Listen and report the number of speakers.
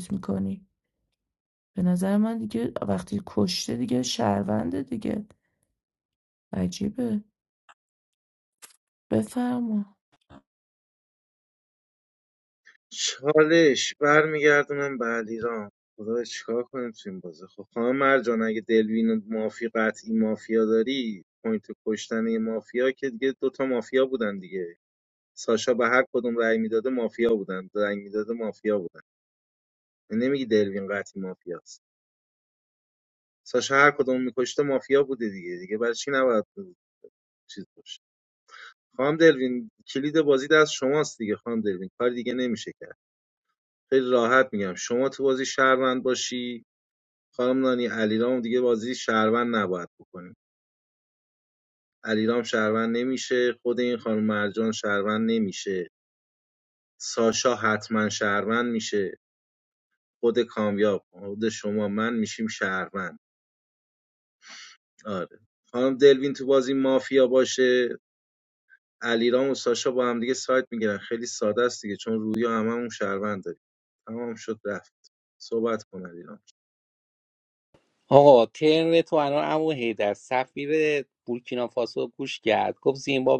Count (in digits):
3